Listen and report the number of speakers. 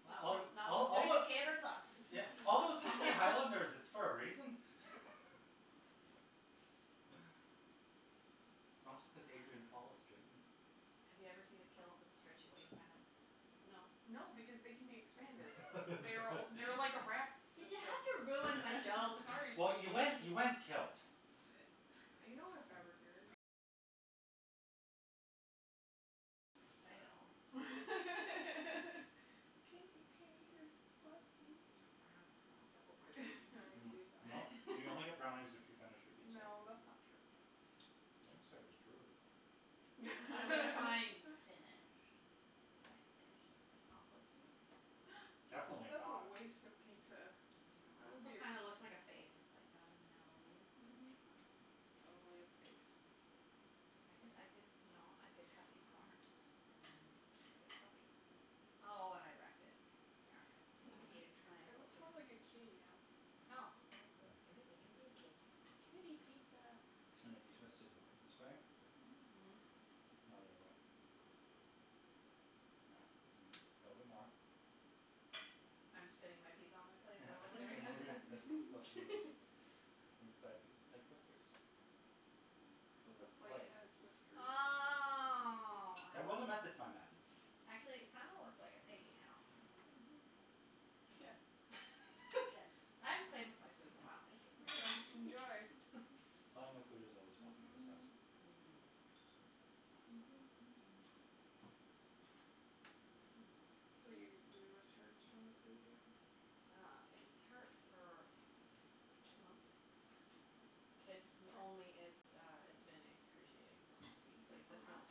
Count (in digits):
4